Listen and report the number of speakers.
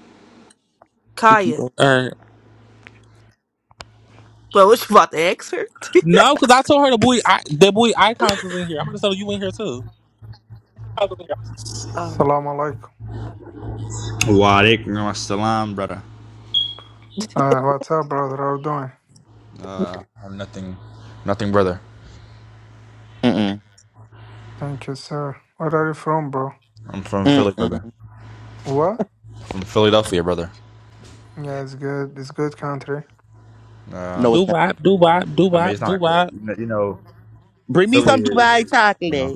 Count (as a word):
five